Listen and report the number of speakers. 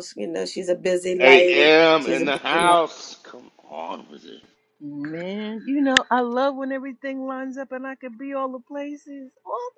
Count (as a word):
three